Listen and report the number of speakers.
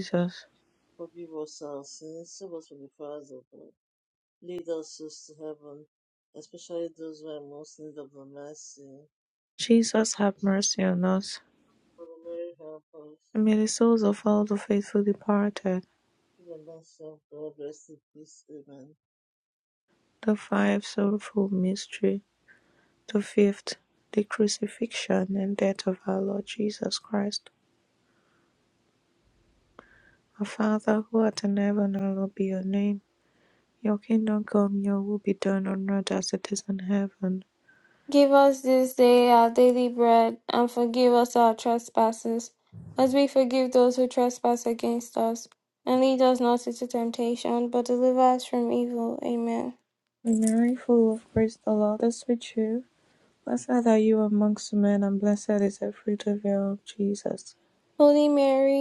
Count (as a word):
three